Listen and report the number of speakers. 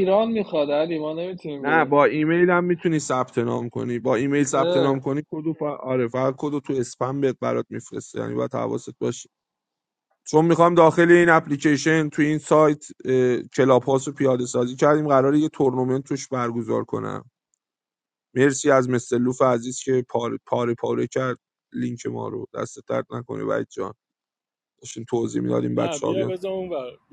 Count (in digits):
3